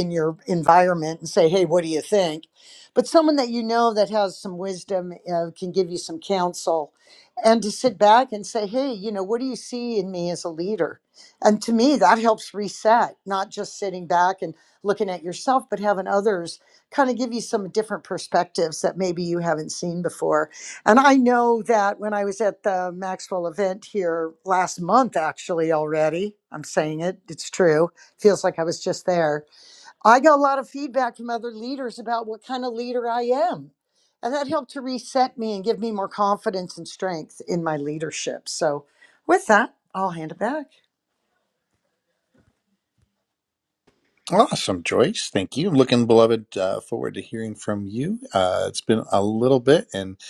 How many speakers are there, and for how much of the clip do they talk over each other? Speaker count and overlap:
2, no overlap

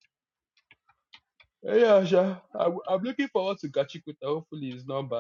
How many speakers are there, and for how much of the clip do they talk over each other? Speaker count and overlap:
1, no overlap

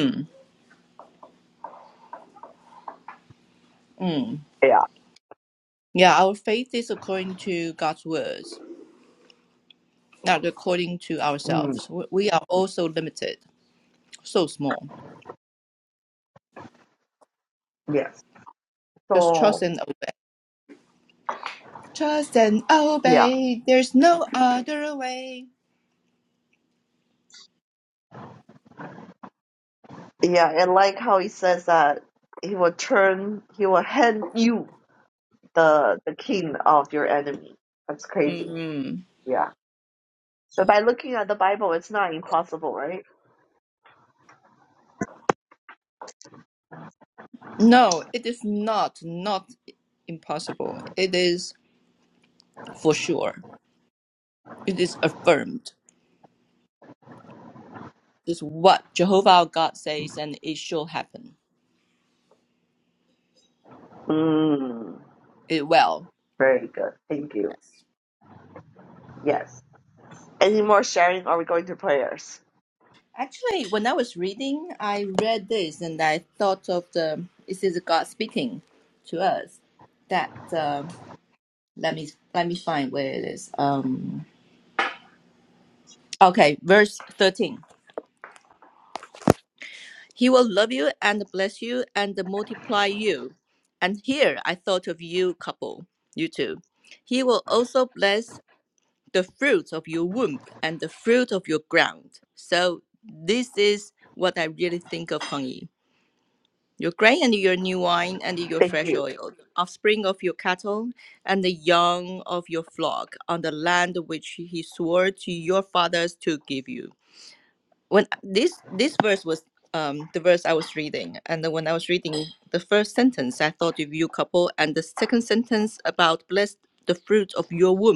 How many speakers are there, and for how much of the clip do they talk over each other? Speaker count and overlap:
2, about 1%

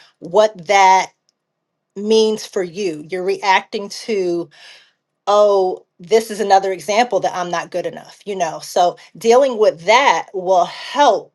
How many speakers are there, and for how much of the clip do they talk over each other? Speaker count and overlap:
1, no overlap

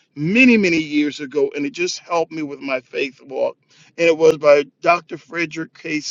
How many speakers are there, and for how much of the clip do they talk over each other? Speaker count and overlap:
1, no overlap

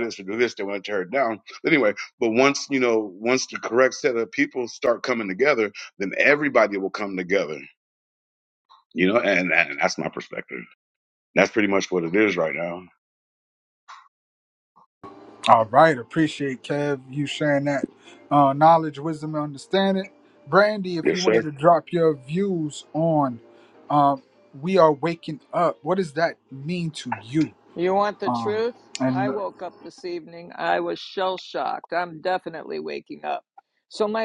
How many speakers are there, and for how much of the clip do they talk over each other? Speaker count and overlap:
3, about 3%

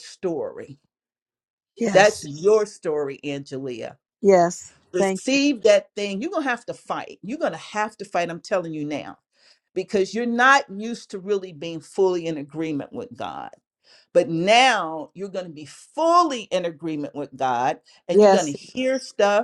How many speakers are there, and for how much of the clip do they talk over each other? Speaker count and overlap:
2, about 5%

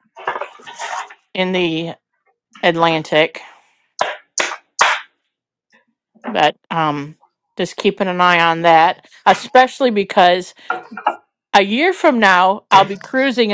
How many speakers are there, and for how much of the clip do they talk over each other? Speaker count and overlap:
1, no overlap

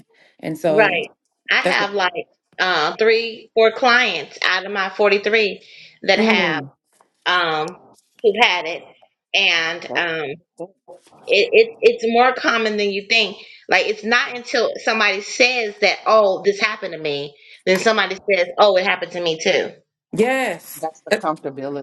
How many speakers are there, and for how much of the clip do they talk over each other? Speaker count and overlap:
3, about 8%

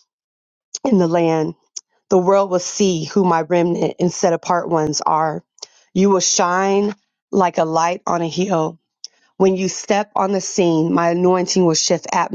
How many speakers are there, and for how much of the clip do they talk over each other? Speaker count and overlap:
1, no overlap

